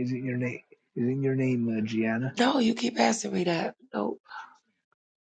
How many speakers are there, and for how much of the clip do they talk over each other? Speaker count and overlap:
two, no overlap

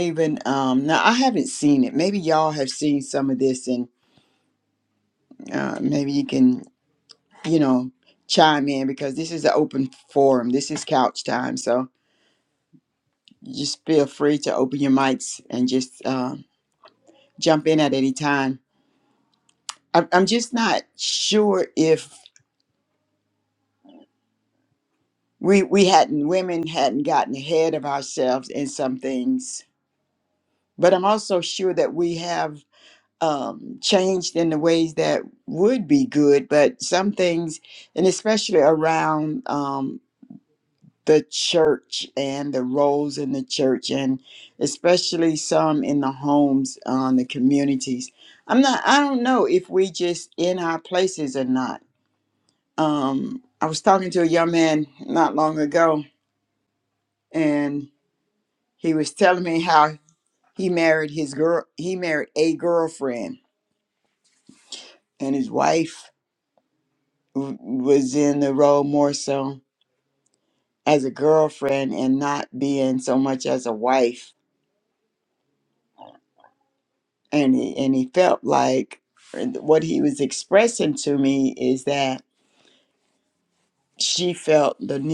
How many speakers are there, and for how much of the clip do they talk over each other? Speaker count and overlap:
one, no overlap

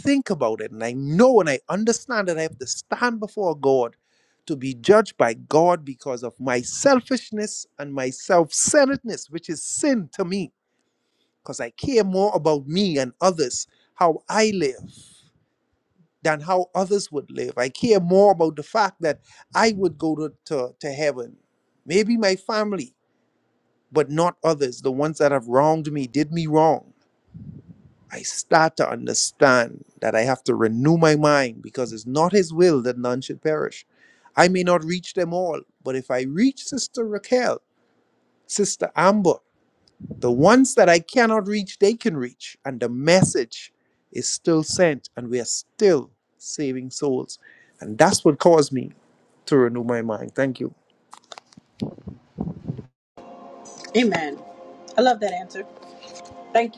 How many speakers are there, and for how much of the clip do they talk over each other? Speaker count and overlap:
two, no overlap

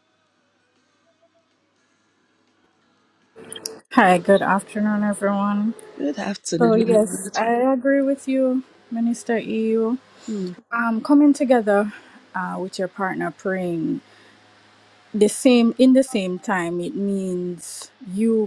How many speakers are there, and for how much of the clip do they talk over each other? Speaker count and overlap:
two, about 4%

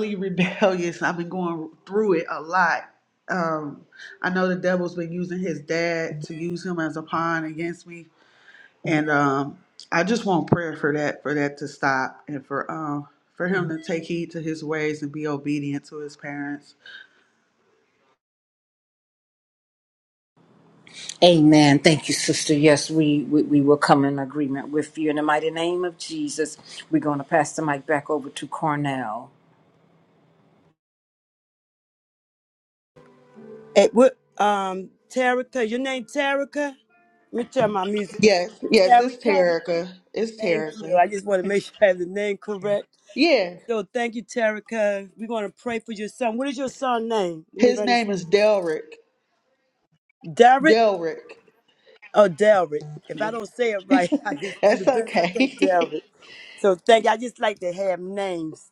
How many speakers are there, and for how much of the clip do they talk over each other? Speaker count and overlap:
three, about 6%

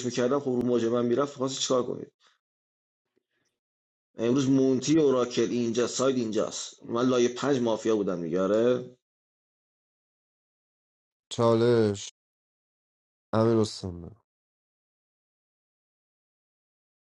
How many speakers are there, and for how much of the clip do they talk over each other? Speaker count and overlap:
two, no overlap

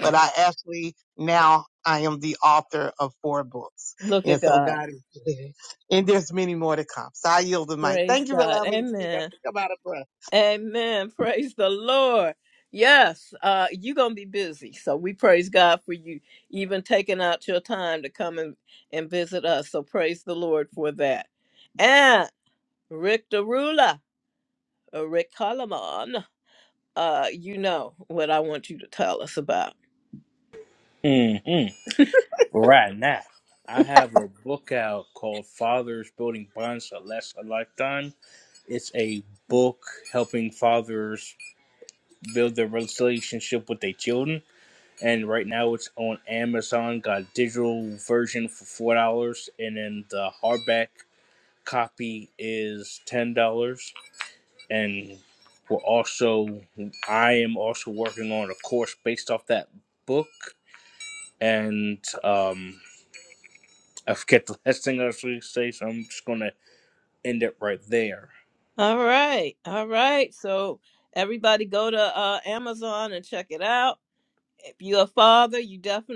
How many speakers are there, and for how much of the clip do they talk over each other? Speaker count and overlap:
three, about 3%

